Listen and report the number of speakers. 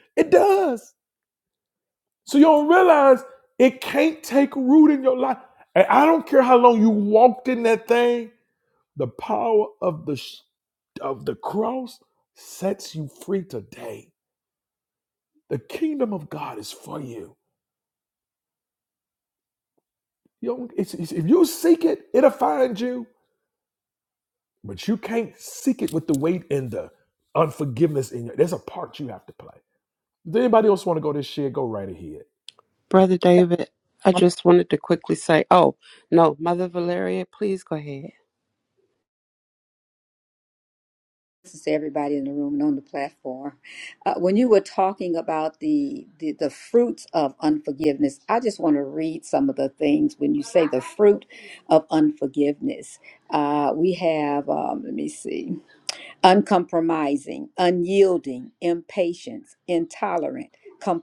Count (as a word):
three